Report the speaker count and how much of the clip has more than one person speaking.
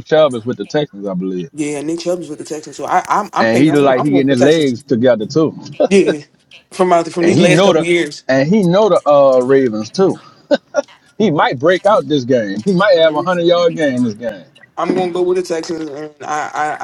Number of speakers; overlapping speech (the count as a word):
two, about 13%